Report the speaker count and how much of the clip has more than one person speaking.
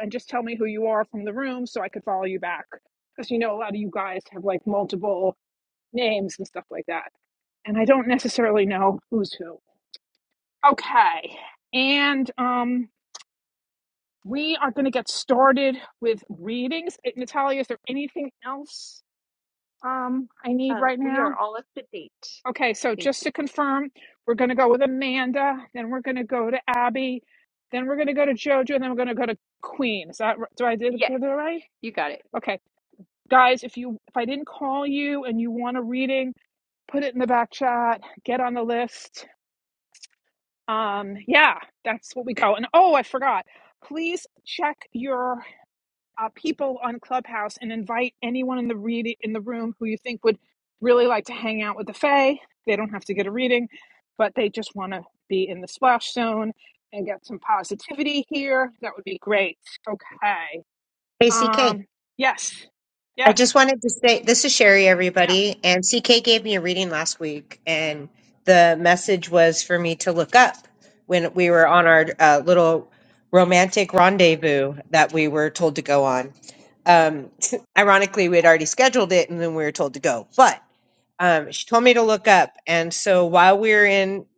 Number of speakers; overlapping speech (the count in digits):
3, about 2%